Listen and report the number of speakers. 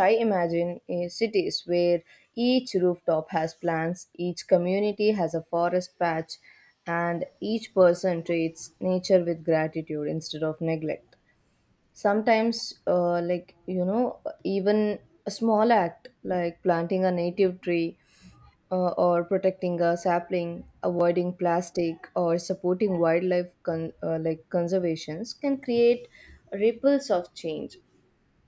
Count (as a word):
one